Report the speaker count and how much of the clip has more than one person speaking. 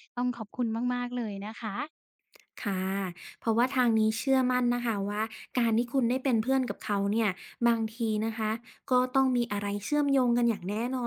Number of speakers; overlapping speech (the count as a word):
two, no overlap